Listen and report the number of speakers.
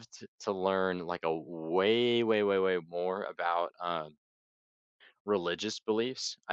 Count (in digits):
1